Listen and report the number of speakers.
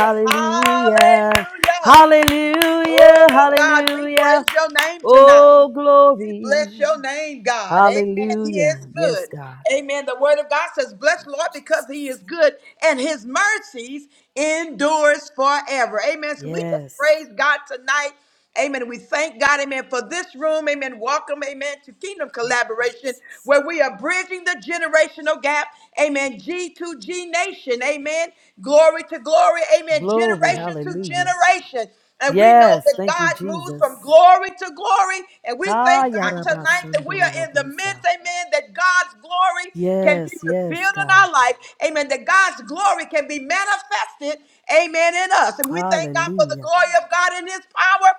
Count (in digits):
2